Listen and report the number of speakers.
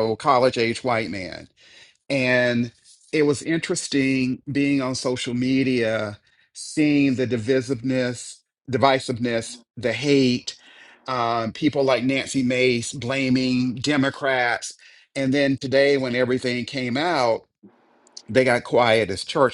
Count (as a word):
one